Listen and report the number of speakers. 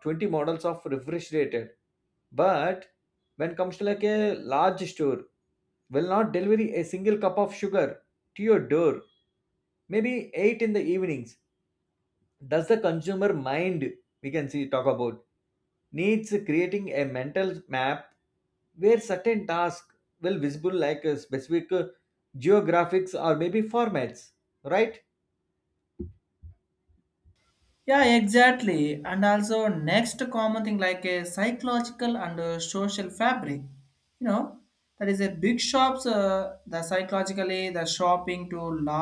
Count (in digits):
2